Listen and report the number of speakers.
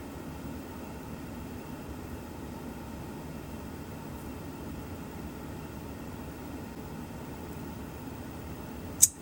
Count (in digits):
0